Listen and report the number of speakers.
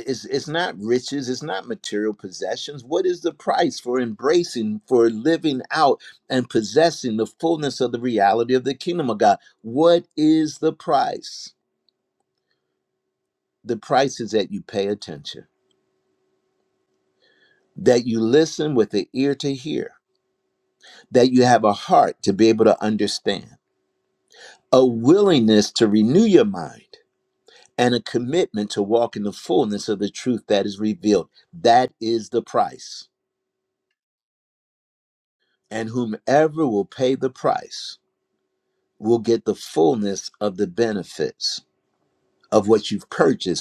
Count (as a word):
one